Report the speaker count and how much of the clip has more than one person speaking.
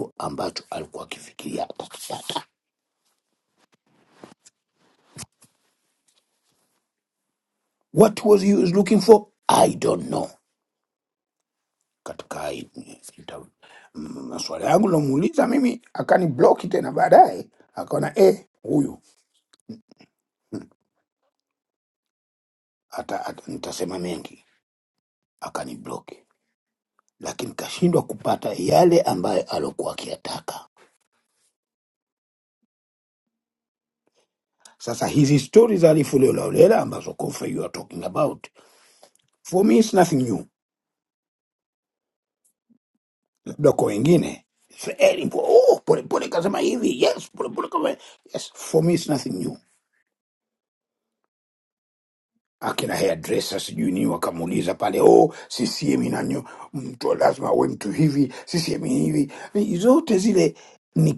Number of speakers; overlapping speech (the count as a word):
one, no overlap